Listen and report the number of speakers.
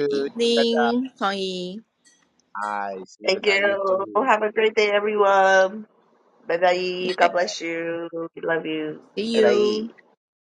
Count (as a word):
three